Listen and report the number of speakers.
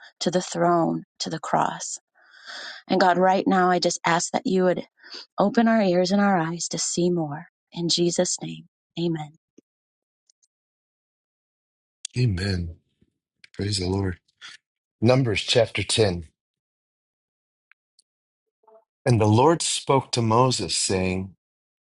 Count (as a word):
two